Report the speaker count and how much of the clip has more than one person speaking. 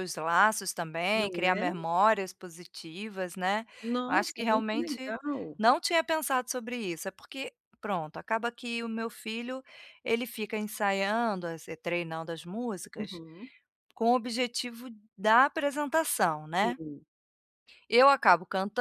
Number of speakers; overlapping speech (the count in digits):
2, about 10%